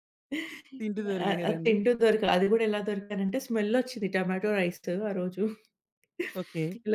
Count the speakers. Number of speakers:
2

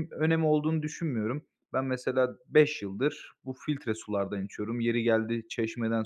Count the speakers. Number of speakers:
1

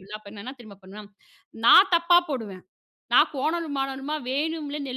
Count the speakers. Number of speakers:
1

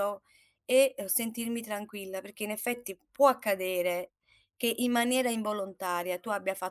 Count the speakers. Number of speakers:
1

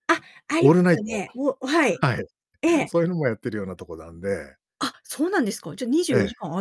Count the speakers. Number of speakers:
2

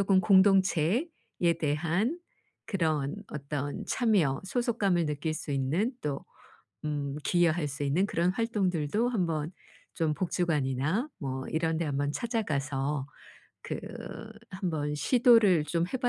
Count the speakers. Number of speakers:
1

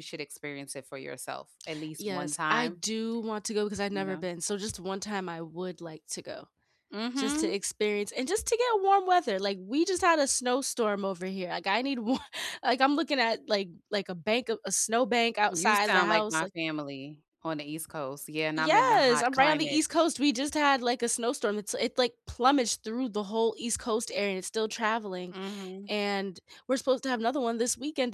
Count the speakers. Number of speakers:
2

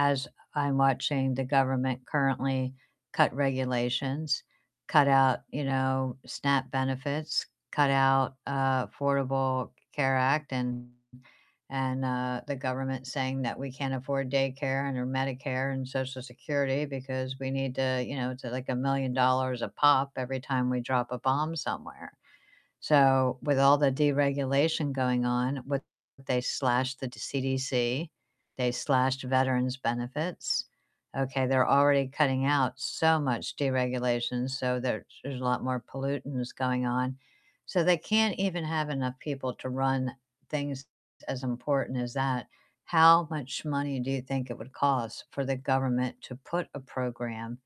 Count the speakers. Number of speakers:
1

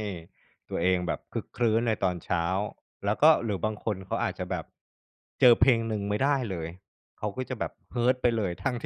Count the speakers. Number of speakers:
1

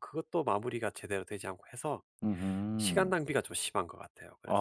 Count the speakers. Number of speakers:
2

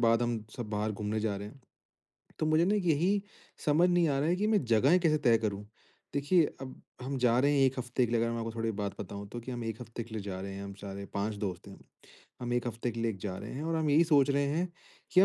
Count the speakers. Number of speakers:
1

